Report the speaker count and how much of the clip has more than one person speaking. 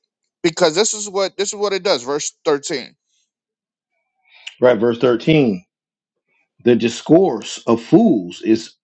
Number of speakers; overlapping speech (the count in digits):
2, no overlap